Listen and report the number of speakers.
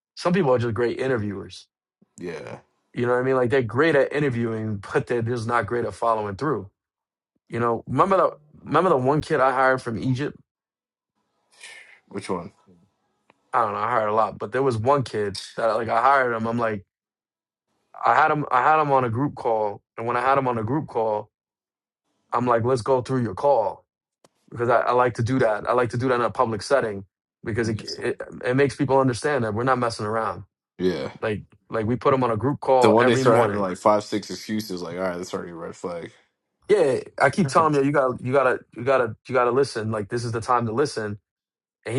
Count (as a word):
two